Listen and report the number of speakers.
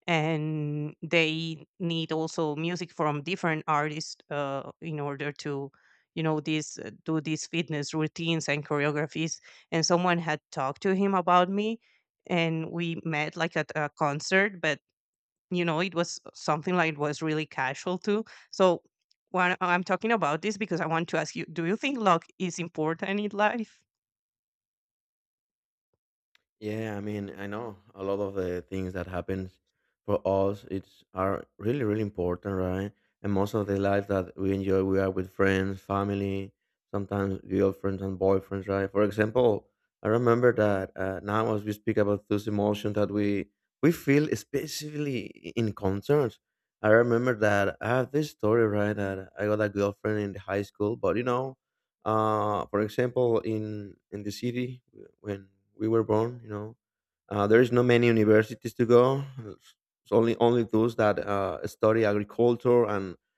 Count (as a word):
two